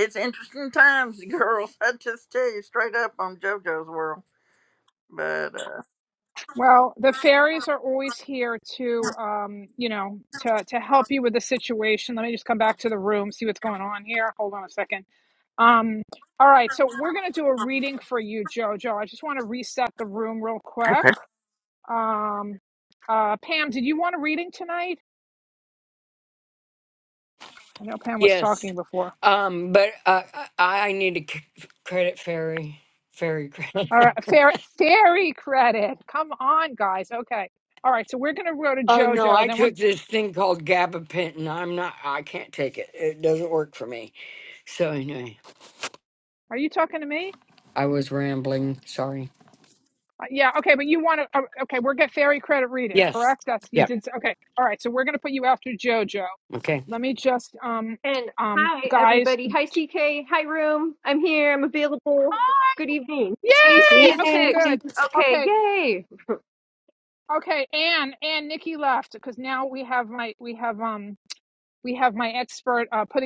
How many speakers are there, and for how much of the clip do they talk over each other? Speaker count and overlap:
four, about 6%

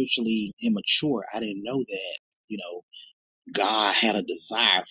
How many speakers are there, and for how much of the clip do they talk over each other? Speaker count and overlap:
one, no overlap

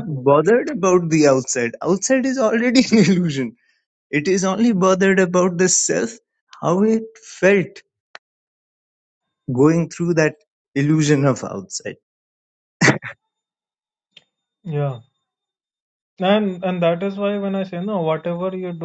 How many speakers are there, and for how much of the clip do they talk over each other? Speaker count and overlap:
two, about 1%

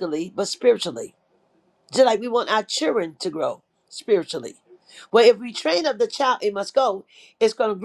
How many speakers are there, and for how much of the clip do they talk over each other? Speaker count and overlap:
one, no overlap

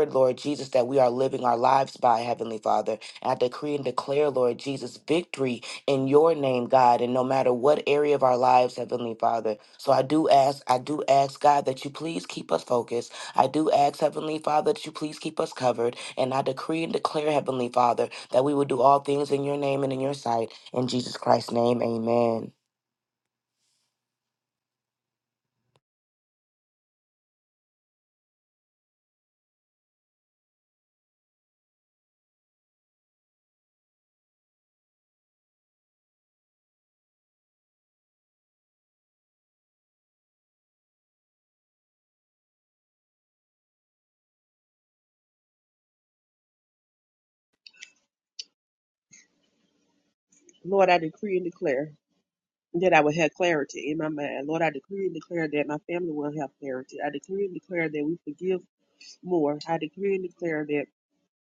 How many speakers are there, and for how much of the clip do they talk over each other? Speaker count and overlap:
two, no overlap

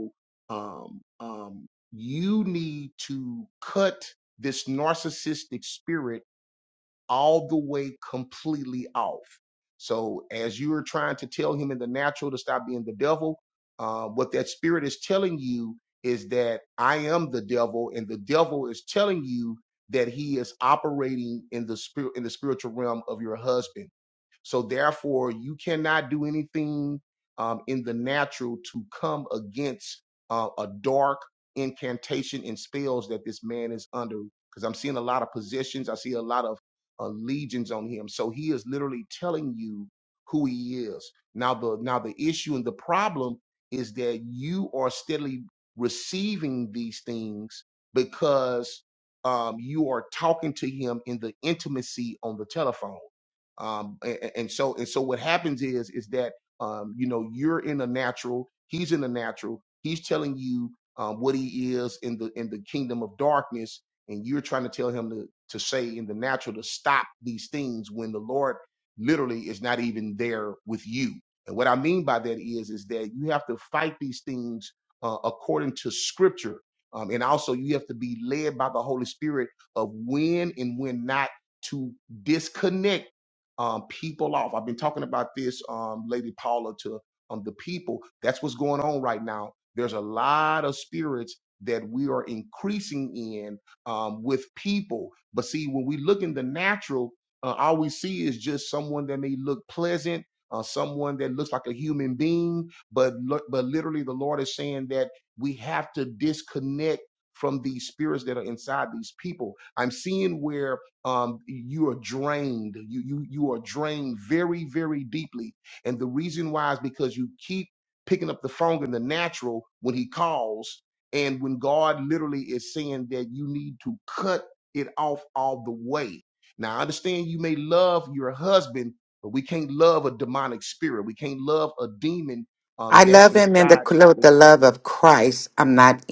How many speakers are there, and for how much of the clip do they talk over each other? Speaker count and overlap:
two, about 1%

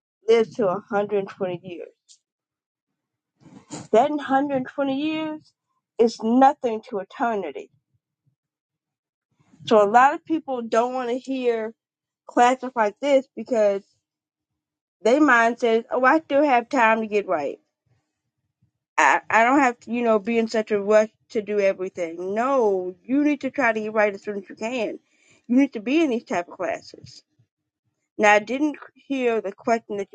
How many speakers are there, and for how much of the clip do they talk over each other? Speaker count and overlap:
one, no overlap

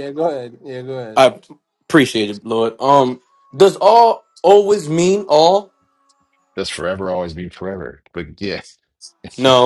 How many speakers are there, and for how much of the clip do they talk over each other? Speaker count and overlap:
three, under 1%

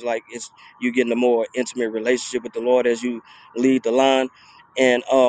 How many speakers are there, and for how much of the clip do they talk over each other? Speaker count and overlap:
one, no overlap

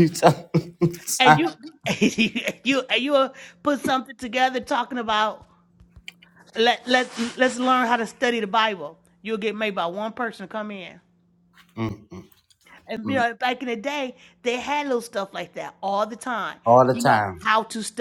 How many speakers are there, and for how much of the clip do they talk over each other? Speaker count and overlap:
two, about 5%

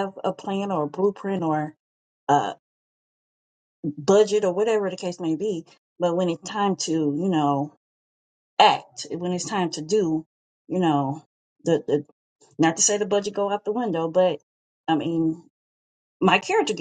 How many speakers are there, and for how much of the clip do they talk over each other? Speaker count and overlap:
one, no overlap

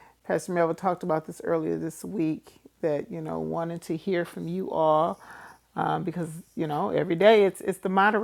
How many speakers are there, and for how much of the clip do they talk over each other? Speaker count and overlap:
one, no overlap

